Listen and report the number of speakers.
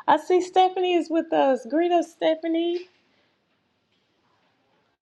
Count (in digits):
1